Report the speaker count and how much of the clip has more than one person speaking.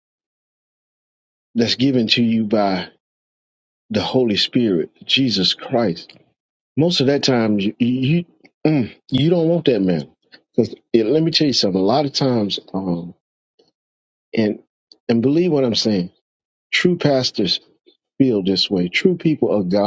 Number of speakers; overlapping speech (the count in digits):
1, no overlap